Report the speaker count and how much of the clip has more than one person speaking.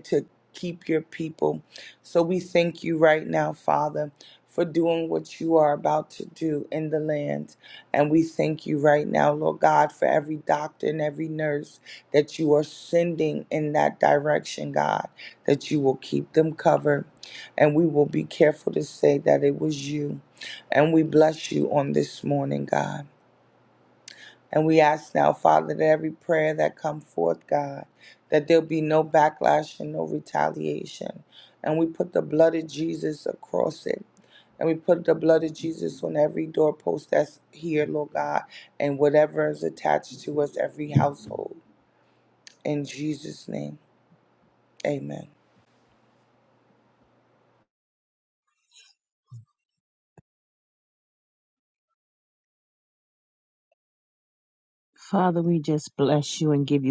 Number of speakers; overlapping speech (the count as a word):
two, no overlap